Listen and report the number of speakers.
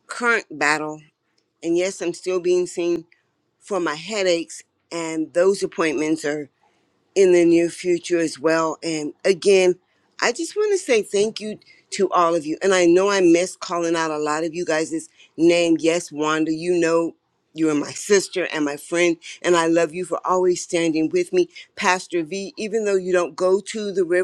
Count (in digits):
1